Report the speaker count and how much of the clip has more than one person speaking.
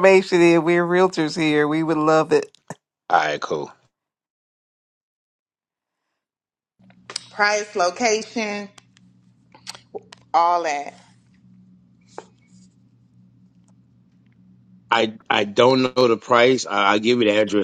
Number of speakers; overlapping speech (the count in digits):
3, no overlap